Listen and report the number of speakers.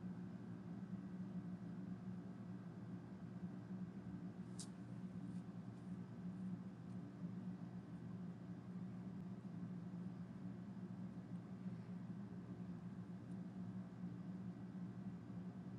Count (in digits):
0